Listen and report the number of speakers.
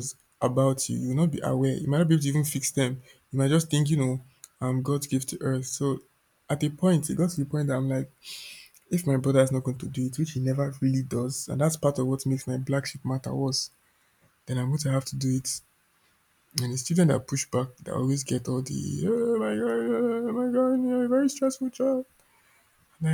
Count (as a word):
one